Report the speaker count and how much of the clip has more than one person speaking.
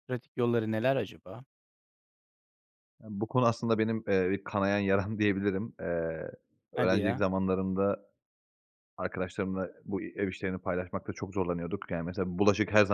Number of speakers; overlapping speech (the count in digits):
2, about 3%